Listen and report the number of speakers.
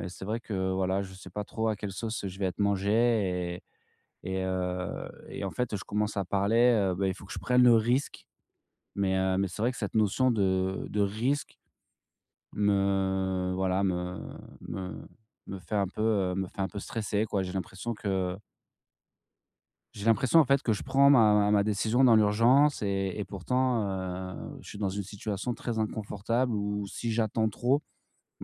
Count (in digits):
1